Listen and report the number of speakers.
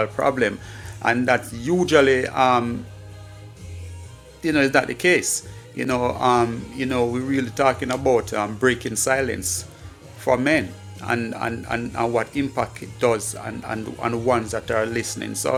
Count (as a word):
one